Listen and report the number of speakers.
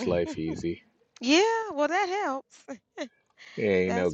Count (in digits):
2